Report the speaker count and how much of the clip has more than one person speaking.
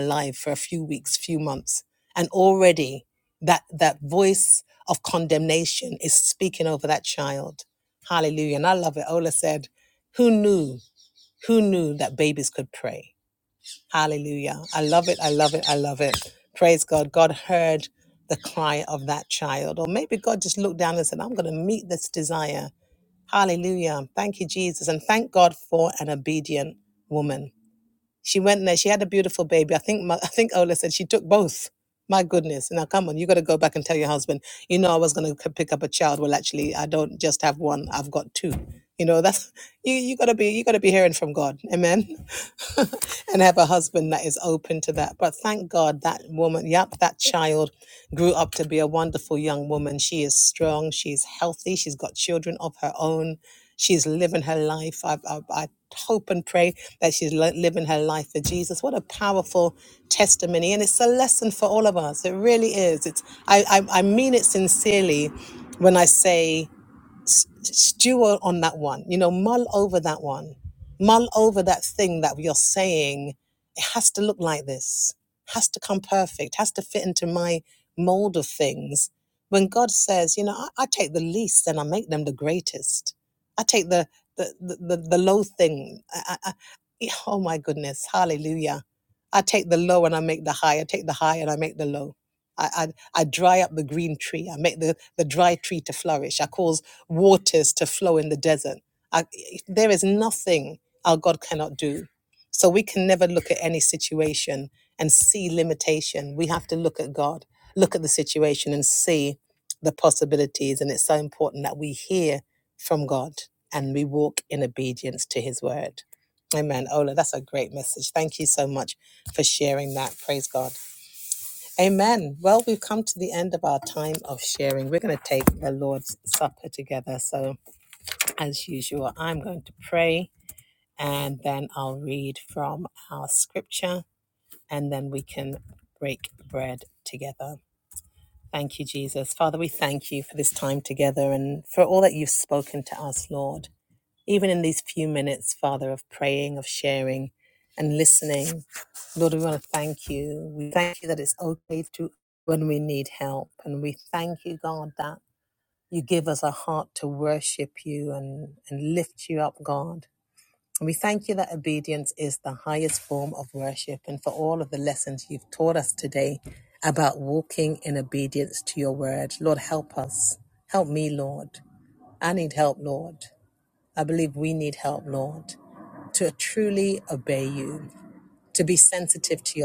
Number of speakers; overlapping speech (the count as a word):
one, no overlap